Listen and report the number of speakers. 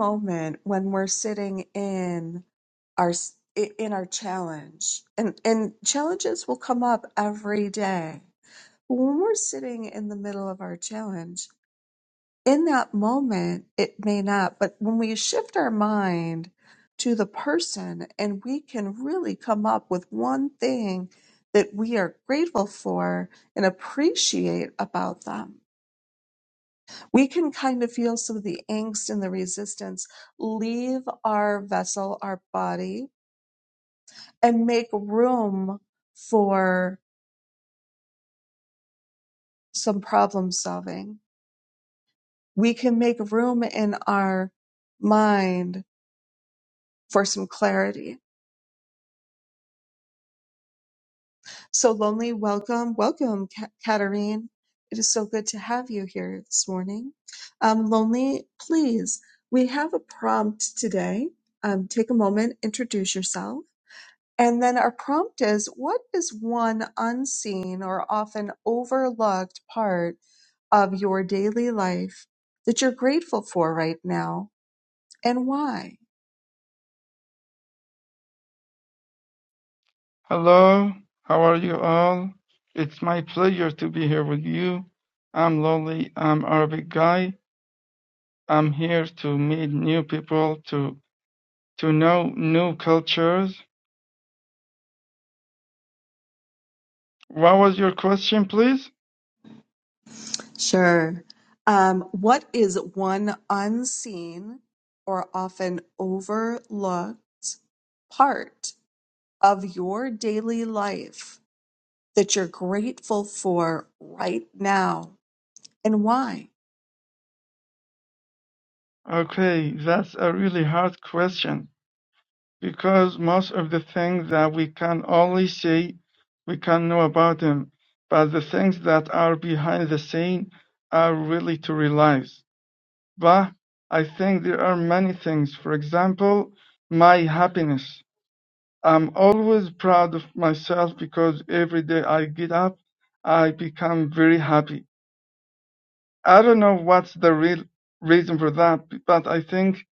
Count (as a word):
two